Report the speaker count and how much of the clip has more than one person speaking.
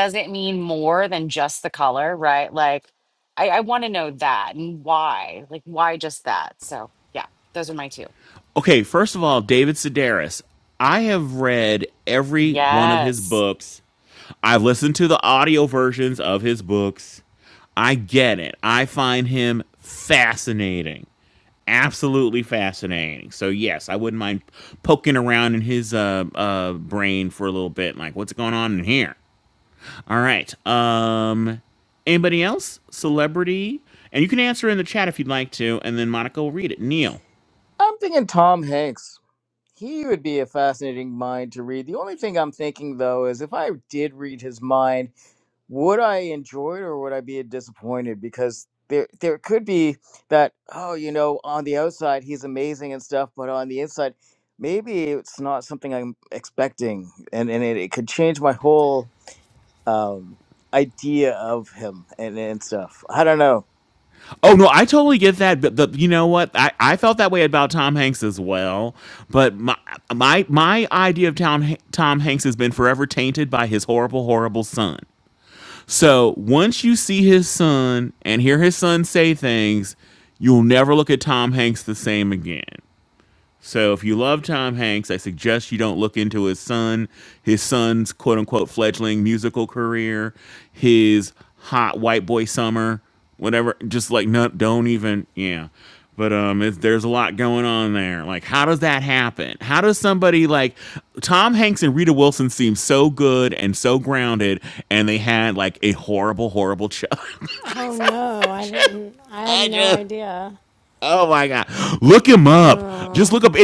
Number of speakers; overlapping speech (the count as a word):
four, about 2%